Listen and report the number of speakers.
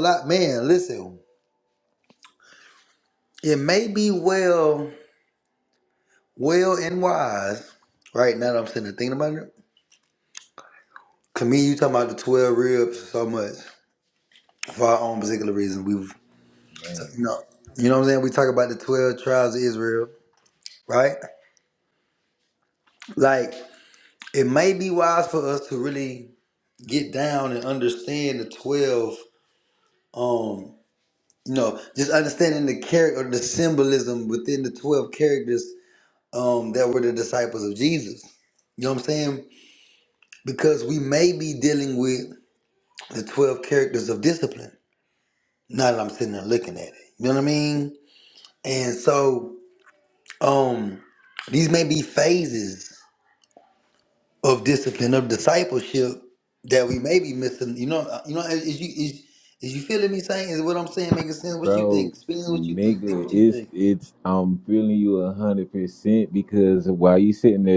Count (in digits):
2